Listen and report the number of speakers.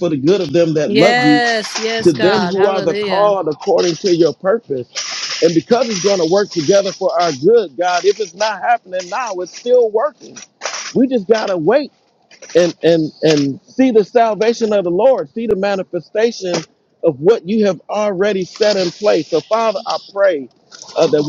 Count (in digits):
2